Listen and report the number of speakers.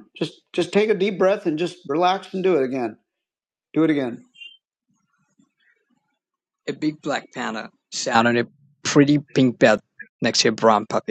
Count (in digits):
2